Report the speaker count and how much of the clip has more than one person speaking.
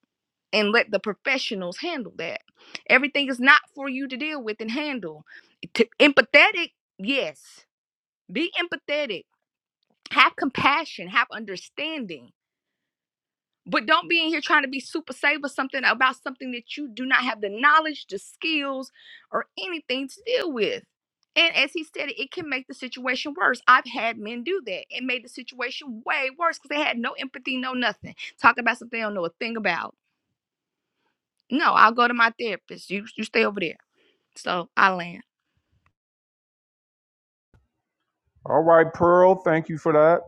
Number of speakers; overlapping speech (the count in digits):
2, no overlap